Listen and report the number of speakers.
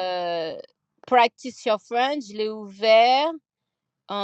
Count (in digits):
1